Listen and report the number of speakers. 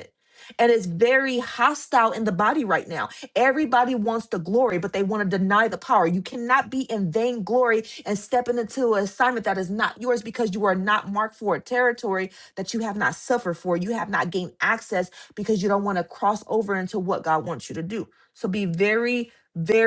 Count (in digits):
1